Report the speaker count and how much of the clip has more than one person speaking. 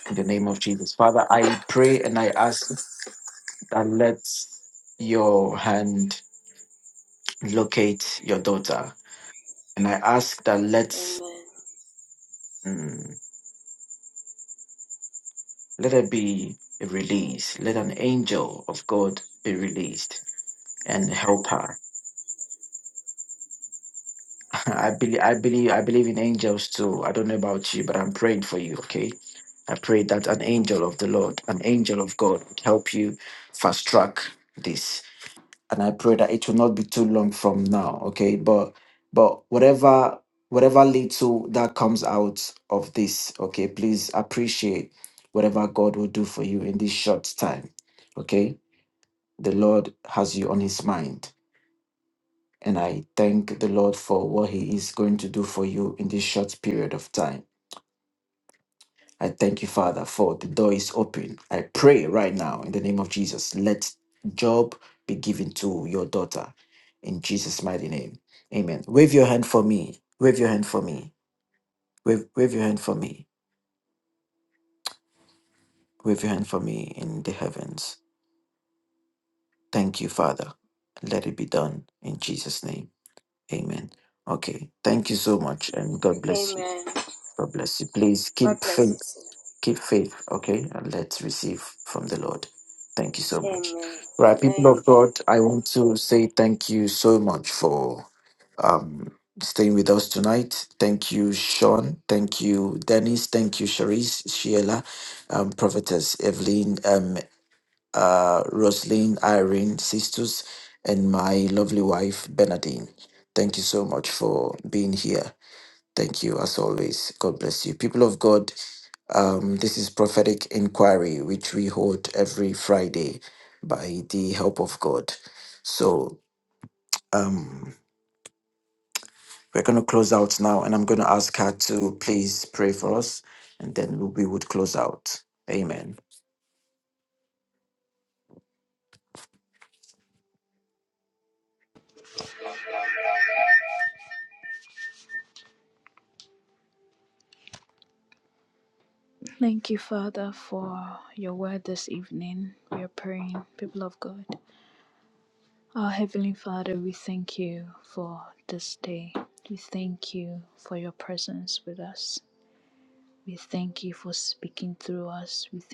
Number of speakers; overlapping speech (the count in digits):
3, about 1%